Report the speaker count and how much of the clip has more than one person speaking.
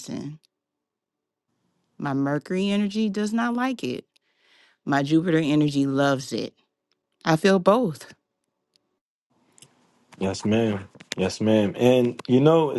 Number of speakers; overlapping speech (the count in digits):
2, no overlap